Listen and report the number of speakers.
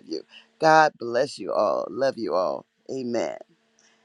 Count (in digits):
1